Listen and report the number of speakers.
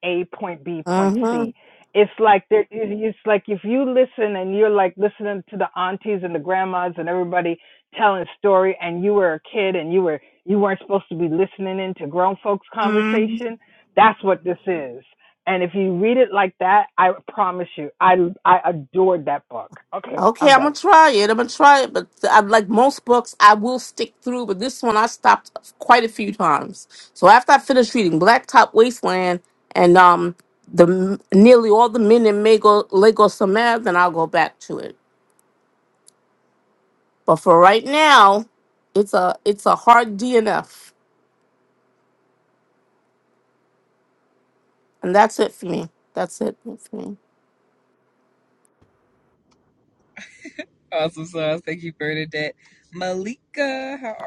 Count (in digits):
3